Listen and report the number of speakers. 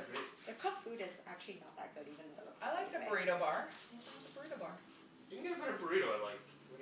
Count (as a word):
three